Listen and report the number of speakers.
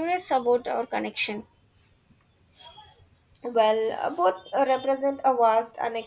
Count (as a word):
two